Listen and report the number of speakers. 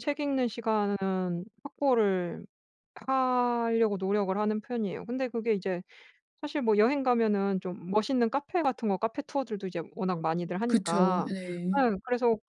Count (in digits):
2